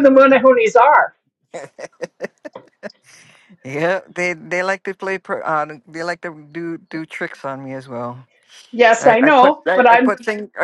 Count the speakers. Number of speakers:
2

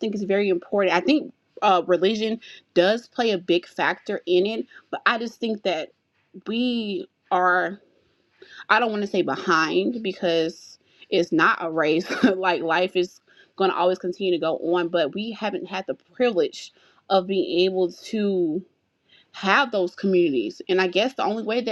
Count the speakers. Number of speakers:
1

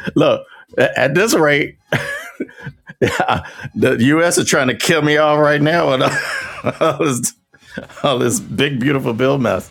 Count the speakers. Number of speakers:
1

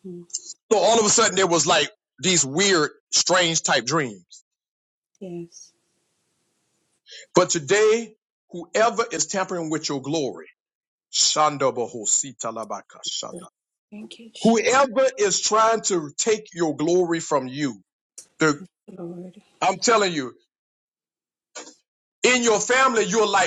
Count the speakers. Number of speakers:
2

